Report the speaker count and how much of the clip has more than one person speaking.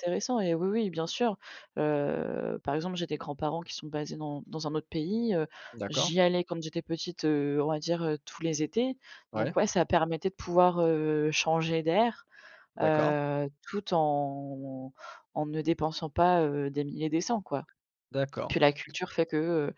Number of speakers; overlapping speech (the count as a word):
two, about 4%